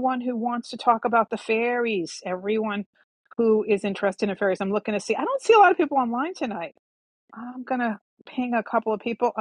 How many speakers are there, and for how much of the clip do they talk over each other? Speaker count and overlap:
1, no overlap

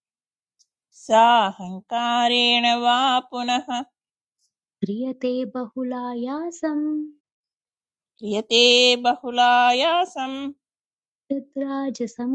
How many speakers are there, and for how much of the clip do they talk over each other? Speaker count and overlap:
2, no overlap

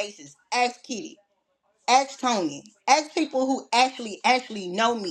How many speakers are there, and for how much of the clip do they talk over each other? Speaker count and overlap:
1, no overlap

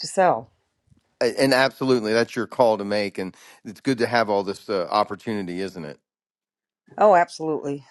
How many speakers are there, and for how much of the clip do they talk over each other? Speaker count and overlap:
2, no overlap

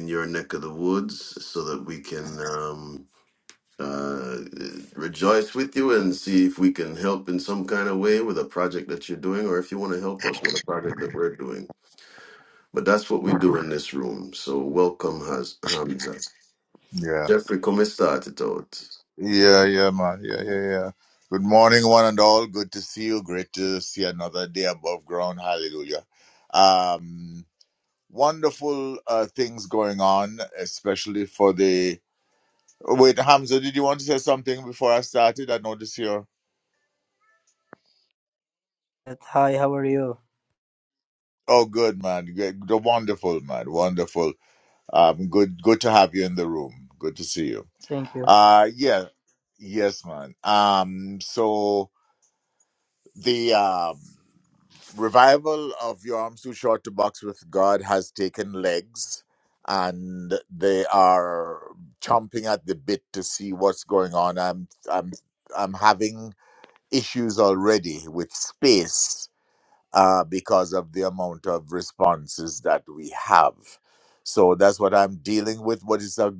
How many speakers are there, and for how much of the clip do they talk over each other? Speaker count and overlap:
3, under 1%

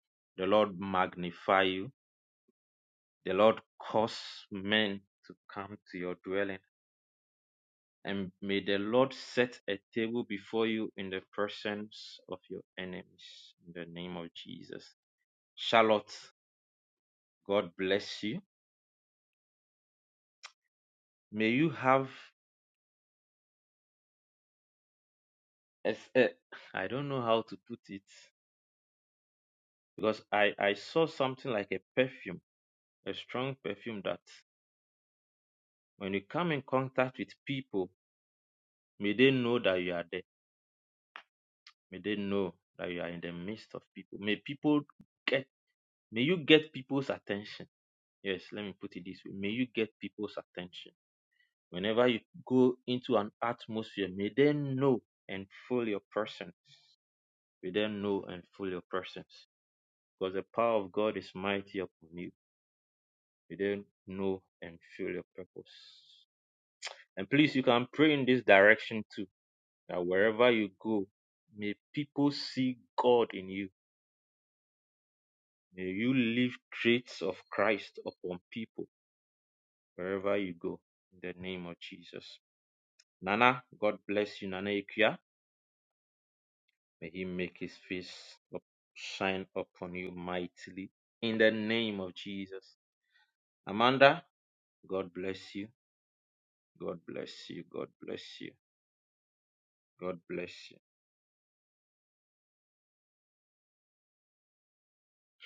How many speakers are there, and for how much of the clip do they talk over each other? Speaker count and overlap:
1, no overlap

